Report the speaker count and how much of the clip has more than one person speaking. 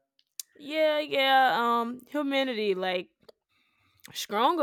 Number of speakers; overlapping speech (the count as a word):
one, no overlap